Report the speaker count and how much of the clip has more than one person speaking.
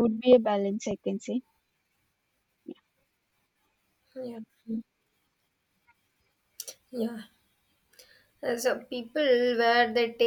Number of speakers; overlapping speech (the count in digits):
2, no overlap